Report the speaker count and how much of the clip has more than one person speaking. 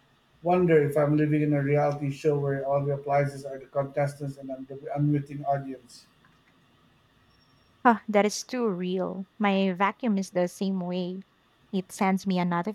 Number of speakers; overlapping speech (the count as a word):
two, no overlap